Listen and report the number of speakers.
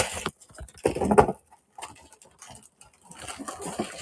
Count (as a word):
zero